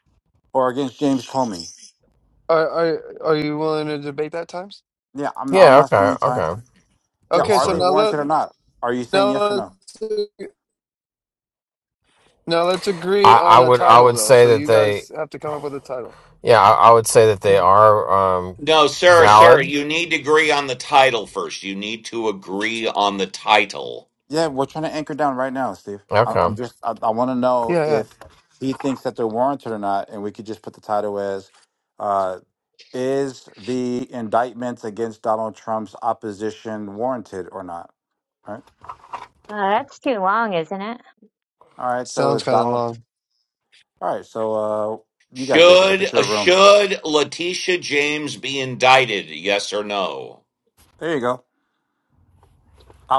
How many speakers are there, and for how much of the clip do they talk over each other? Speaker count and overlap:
5, about 13%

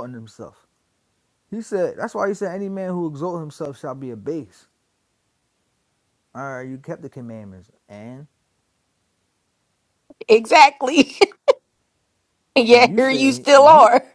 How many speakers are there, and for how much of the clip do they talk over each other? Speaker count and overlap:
2, about 9%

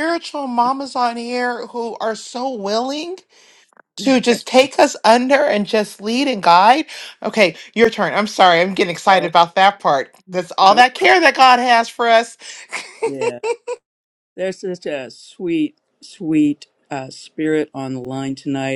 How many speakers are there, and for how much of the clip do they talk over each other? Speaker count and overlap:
2, about 1%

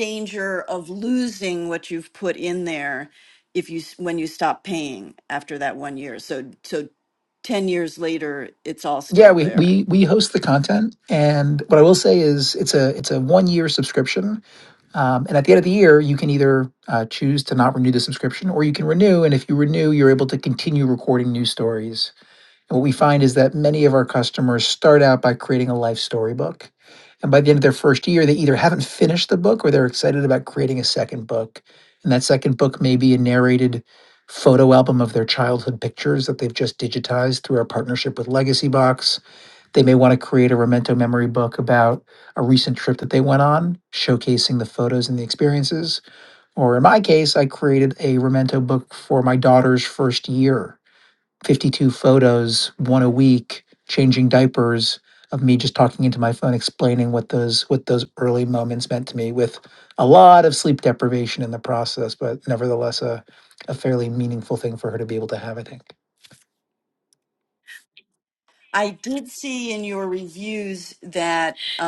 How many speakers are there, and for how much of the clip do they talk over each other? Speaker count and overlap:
2, about 1%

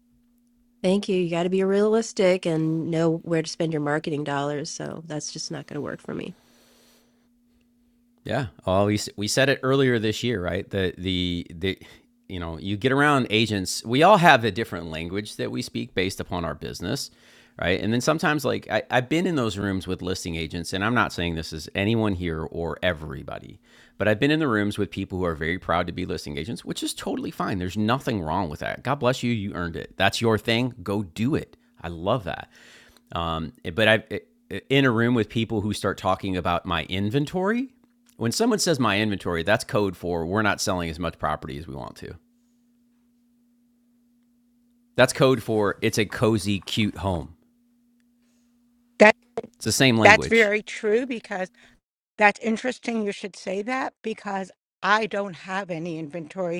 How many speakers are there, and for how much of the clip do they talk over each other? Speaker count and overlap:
3, about 1%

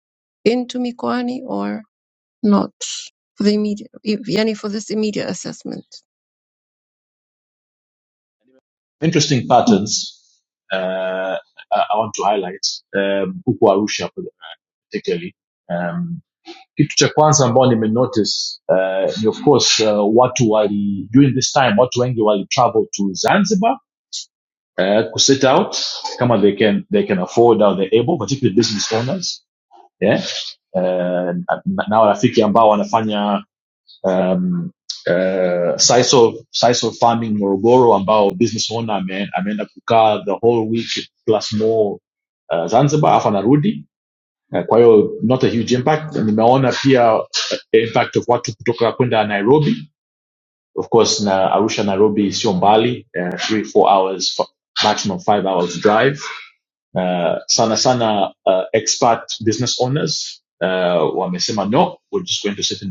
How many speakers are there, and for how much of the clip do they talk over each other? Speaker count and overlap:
2, no overlap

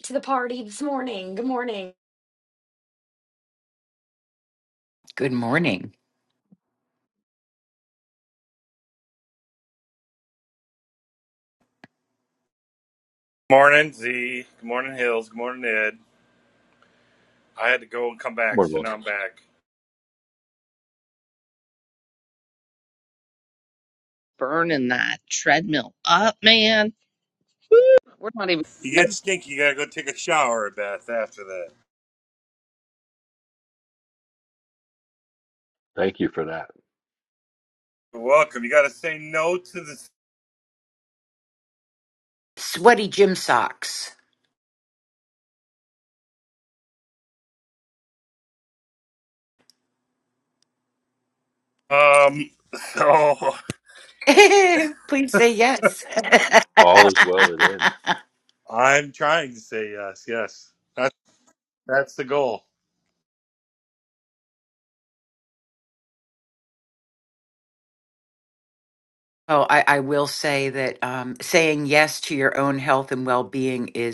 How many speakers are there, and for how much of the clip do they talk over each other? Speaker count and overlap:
5, about 1%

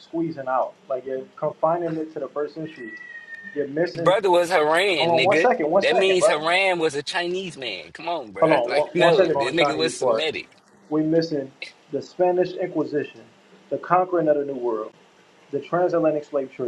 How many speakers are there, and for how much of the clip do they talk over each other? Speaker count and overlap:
2, about 19%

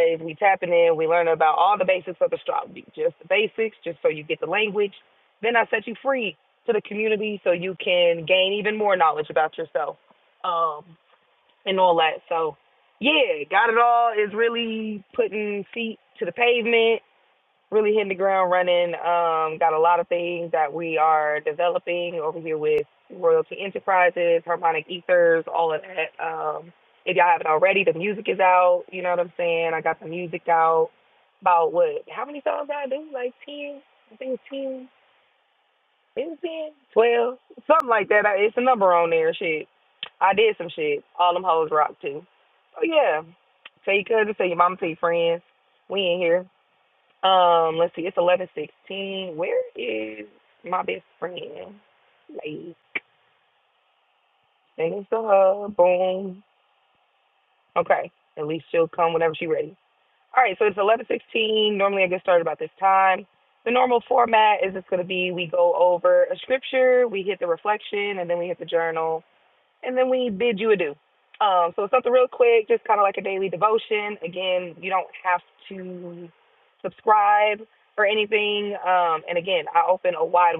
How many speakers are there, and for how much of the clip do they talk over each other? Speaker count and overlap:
1, no overlap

